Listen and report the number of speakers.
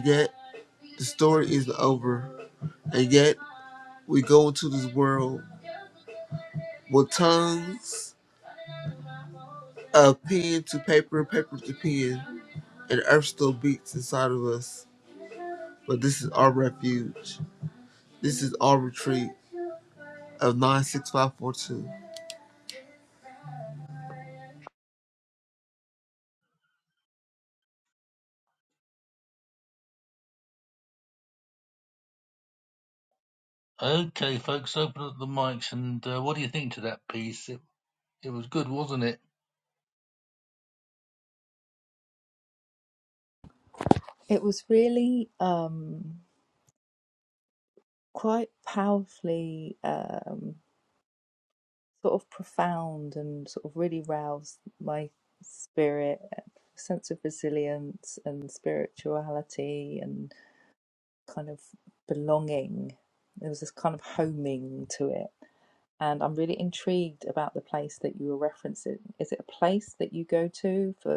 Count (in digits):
3